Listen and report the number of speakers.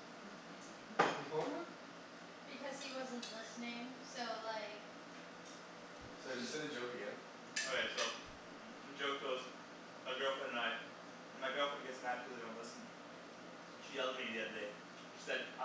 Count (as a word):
three